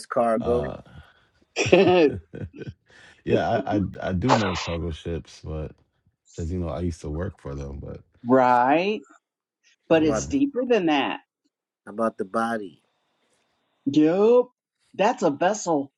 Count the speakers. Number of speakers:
3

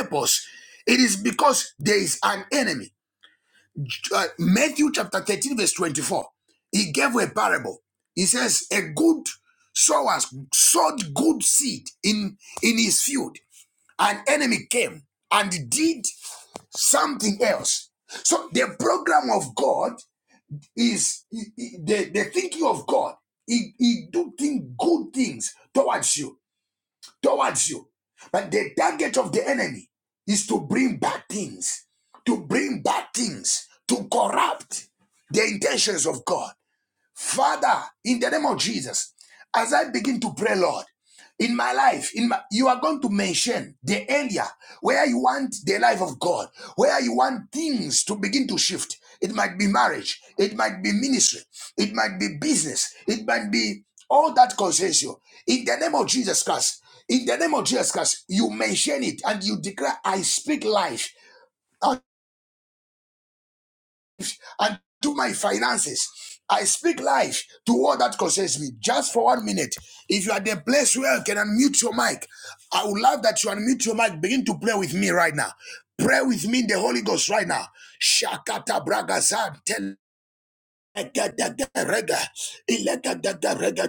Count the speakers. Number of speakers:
1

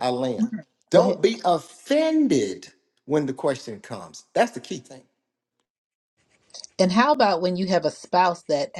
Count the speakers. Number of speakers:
2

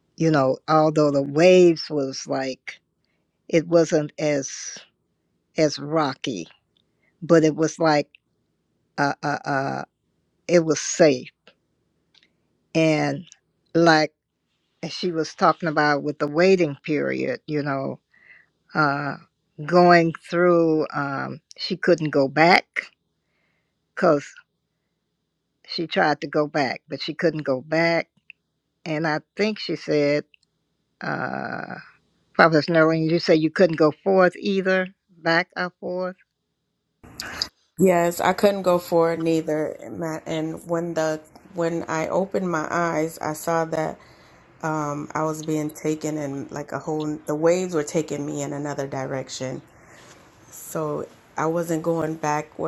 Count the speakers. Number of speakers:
2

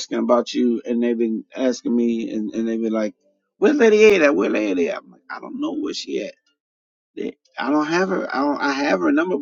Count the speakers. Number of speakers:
1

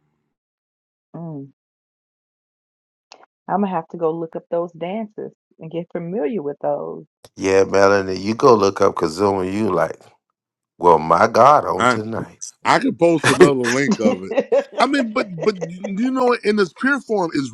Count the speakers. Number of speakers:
3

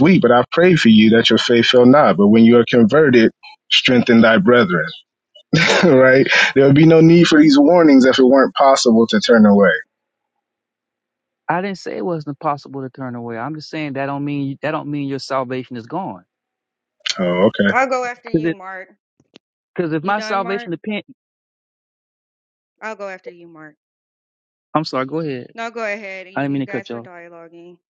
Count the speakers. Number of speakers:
3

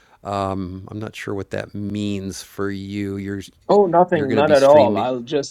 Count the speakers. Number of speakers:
2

